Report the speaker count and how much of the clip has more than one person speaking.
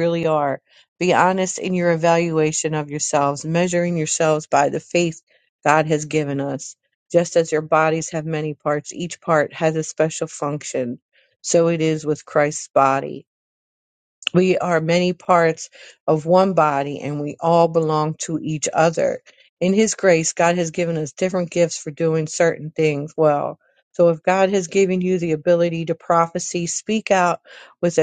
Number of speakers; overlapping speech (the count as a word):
one, no overlap